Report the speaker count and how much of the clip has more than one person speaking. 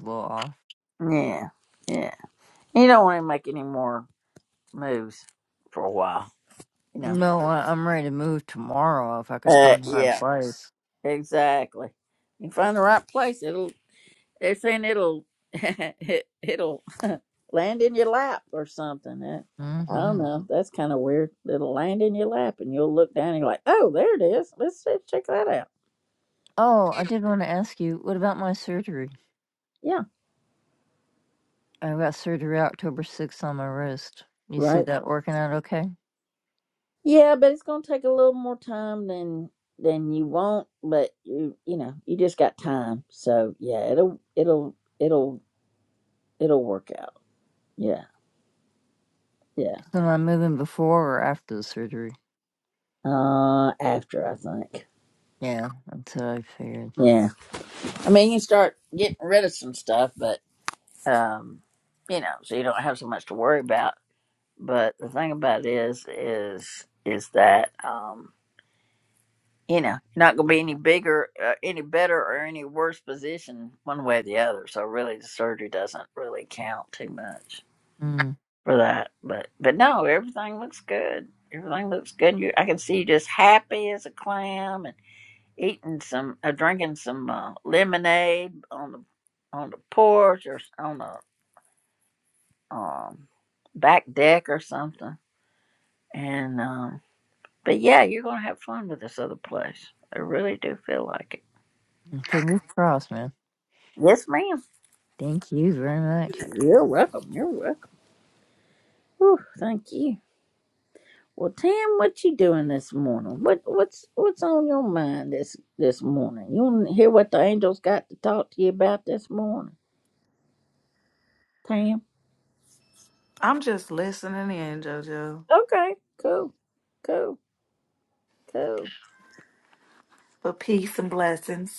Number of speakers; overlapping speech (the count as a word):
three, about 1%